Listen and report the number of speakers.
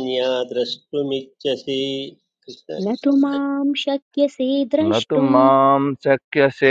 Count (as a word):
three